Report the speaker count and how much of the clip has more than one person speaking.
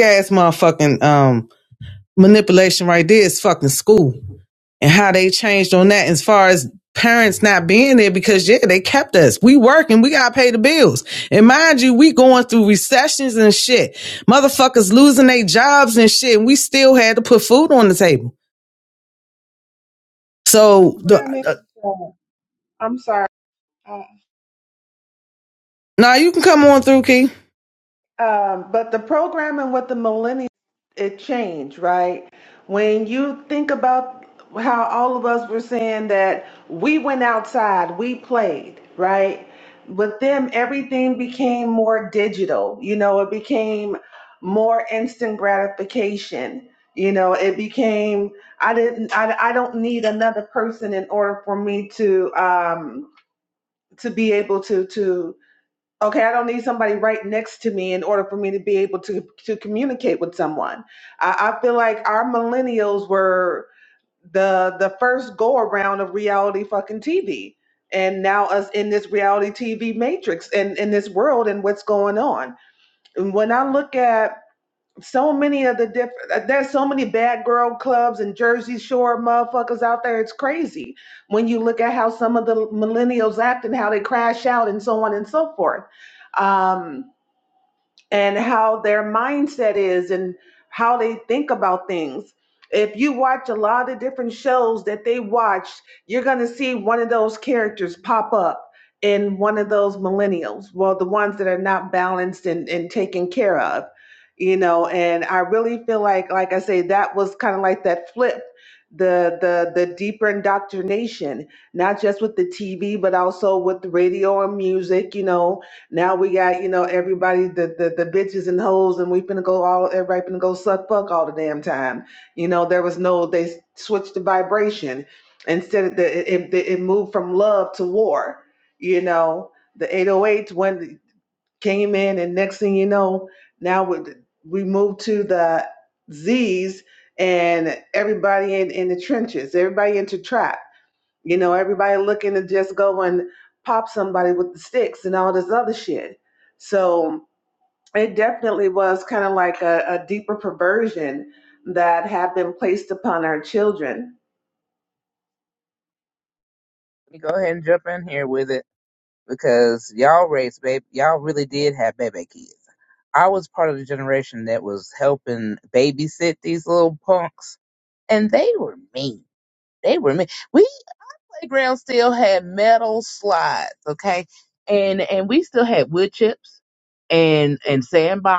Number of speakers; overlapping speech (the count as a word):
three, under 1%